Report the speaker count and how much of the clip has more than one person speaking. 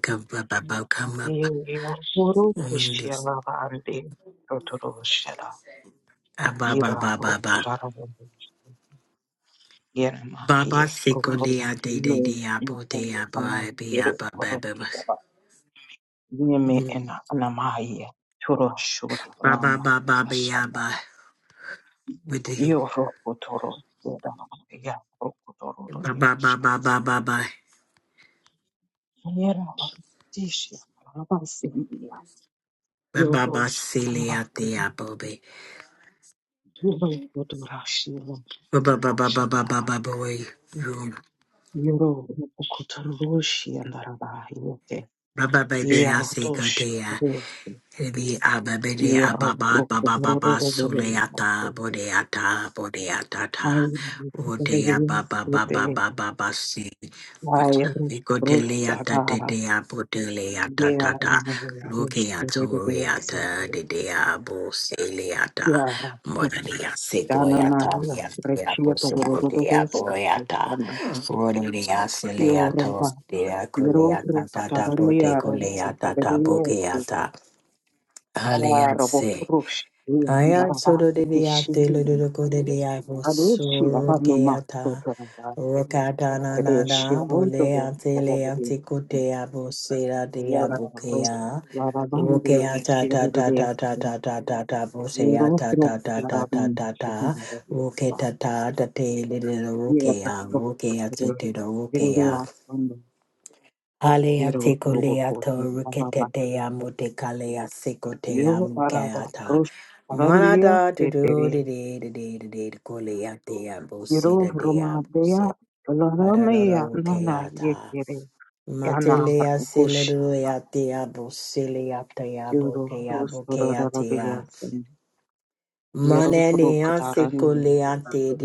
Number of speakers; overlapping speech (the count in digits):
2, about 35%